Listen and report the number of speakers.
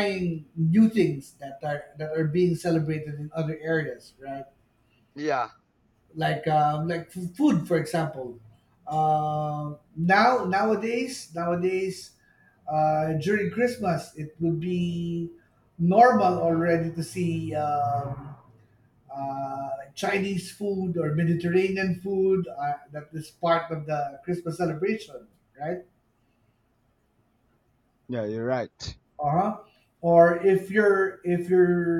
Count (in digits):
2